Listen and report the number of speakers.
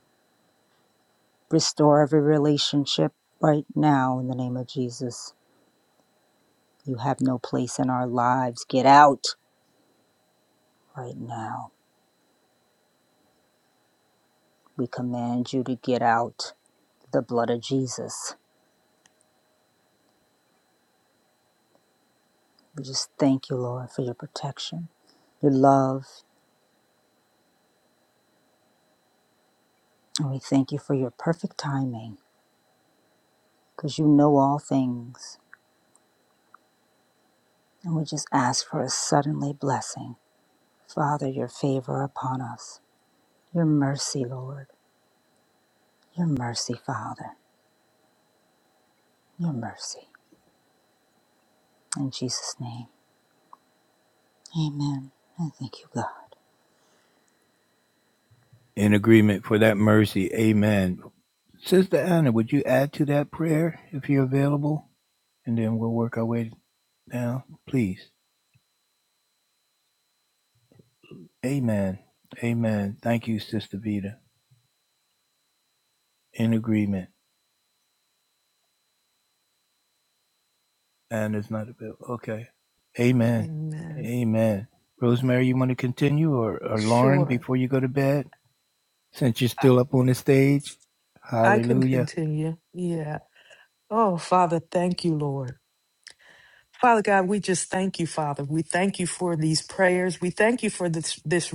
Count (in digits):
3